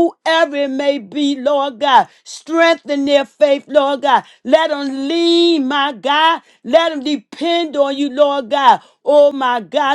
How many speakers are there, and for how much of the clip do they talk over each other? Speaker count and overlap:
1, no overlap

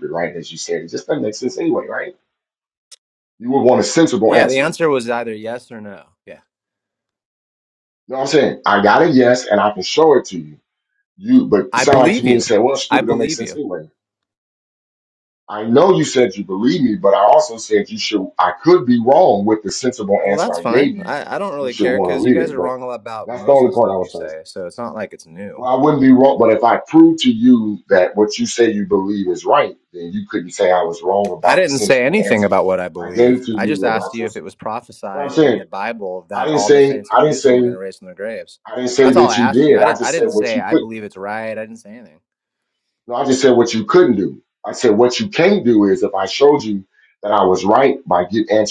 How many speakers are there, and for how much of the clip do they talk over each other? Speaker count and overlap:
2, about 22%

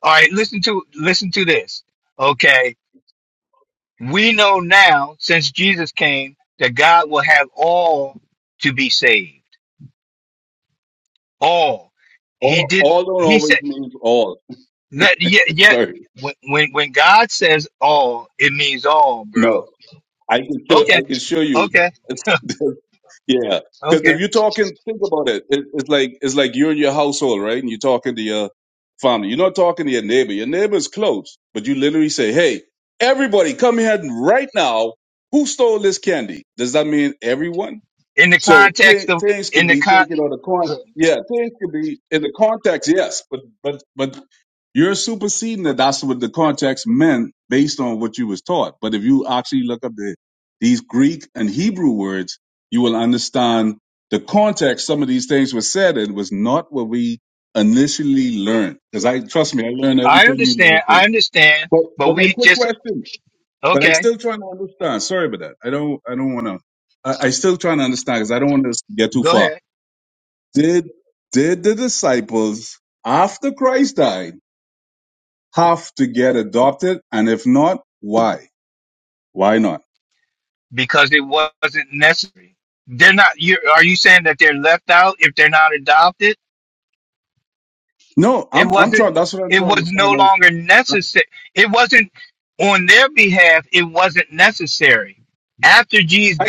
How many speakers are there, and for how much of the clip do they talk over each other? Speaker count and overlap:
2, about 8%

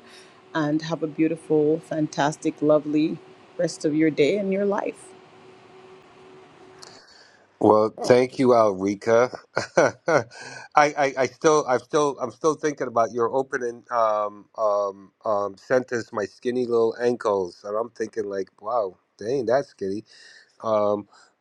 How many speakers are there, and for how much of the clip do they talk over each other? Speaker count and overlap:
2, no overlap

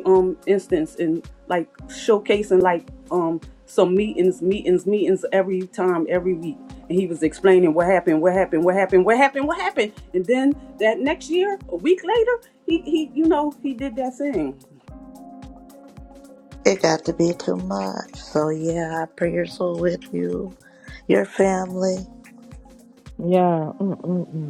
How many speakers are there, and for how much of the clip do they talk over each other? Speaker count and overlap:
3, no overlap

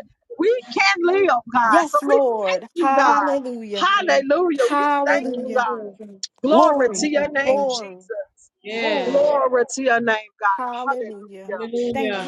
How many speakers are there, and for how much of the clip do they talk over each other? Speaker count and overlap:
3, about 53%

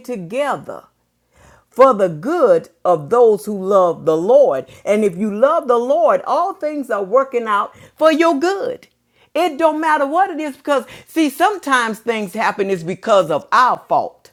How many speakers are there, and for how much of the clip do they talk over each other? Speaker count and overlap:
1, no overlap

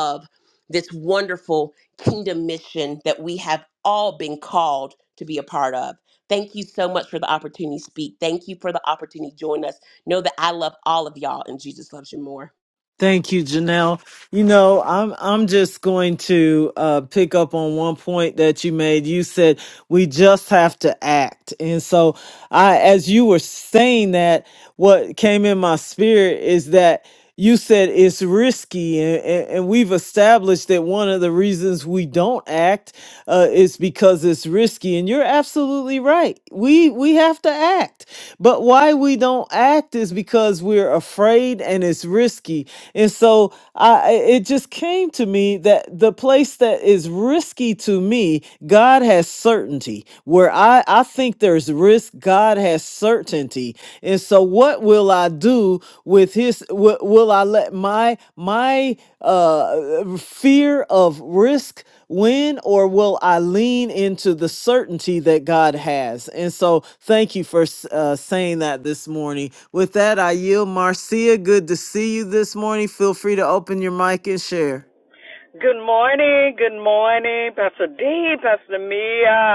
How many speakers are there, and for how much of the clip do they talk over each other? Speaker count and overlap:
3, no overlap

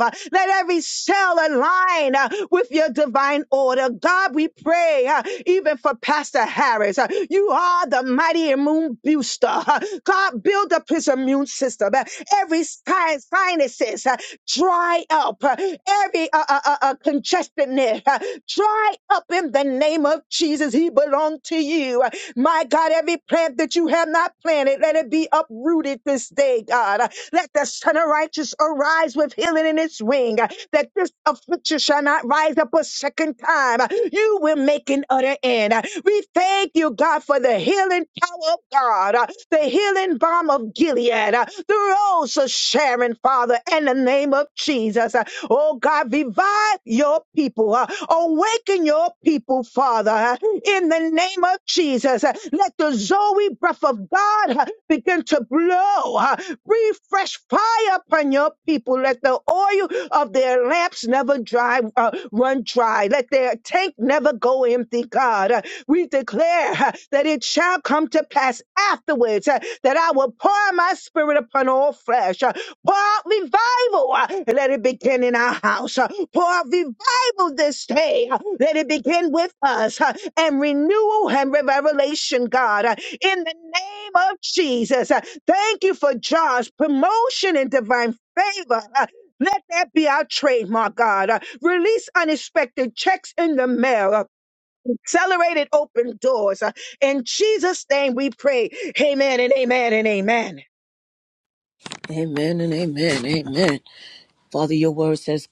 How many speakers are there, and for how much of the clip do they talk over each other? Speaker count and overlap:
2, no overlap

